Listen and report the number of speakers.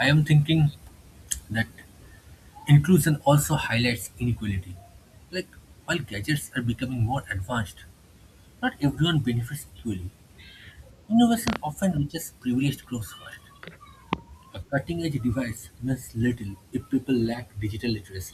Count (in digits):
1